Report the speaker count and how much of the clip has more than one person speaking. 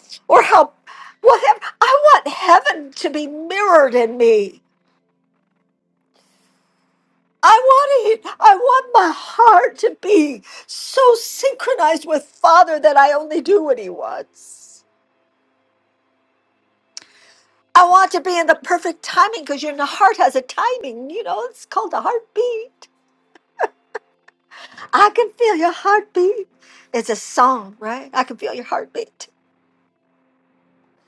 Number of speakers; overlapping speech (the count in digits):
1, no overlap